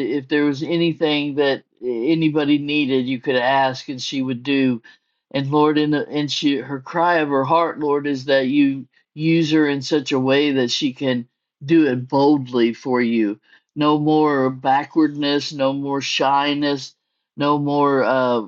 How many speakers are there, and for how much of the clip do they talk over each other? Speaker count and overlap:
1, no overlap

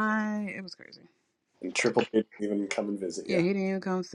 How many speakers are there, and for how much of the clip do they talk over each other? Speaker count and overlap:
2, about 5%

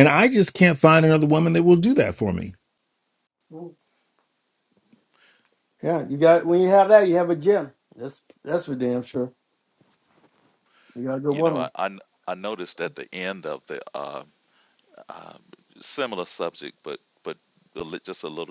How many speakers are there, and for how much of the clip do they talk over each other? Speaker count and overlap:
3, about 2%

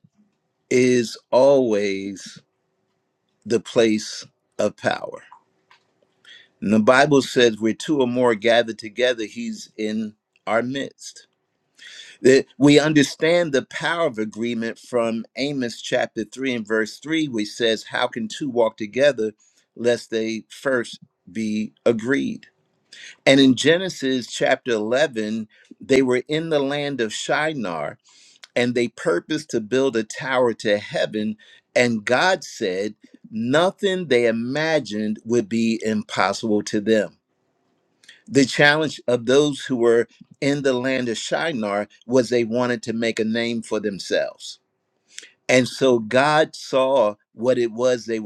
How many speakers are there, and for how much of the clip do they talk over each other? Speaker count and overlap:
1, no overlap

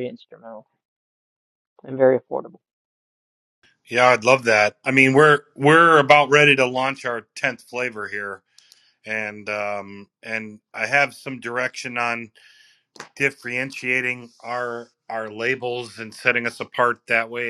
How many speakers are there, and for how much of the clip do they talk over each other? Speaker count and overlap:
2, no overlap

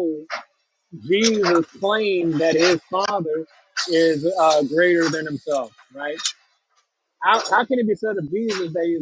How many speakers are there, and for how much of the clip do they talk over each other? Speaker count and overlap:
1, no overlap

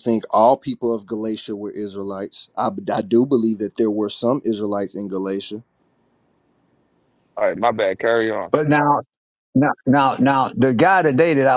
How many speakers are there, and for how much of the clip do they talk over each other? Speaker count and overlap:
3, no overlap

